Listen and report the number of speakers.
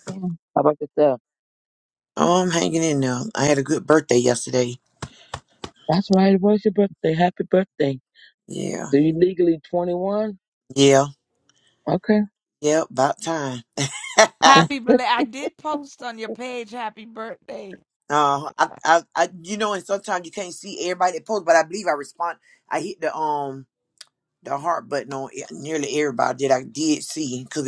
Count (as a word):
three